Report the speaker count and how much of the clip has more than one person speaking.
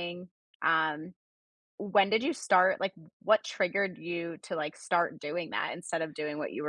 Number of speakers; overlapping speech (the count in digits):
1, no overlap